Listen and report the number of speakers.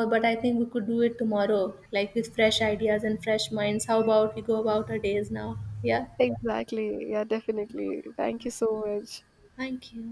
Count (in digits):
2